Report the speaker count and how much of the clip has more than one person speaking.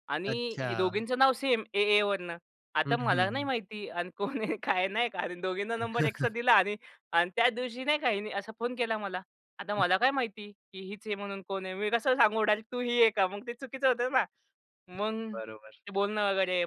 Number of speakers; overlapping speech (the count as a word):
two, about 8%